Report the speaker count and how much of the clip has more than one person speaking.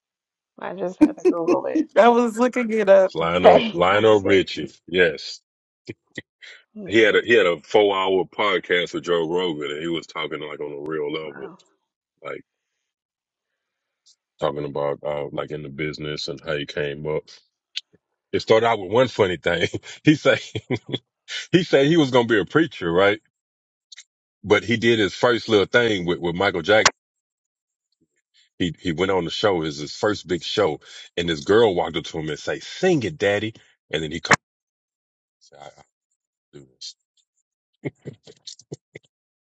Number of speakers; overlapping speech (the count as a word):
three, about 3%